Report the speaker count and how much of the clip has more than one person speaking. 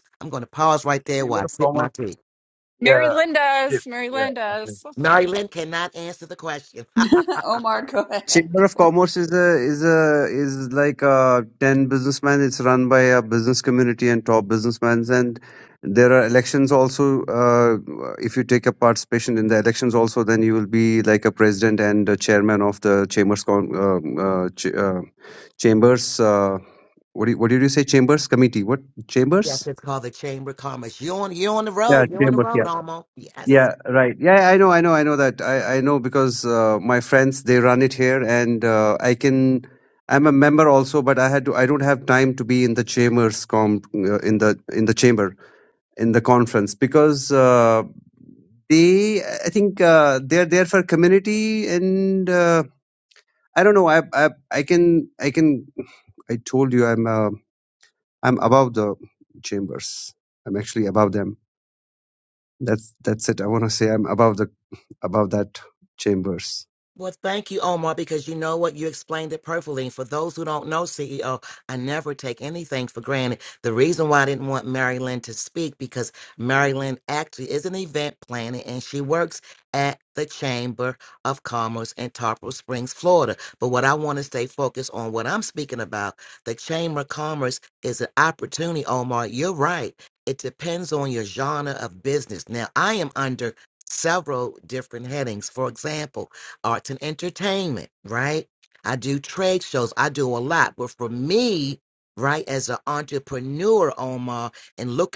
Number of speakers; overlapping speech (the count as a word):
four, about 3%